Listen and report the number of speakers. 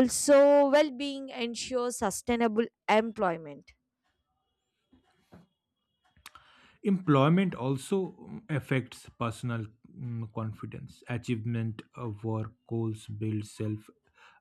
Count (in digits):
2